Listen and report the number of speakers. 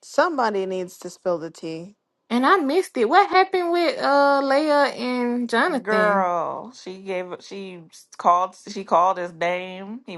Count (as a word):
three